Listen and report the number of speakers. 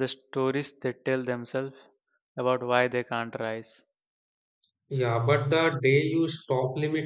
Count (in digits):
2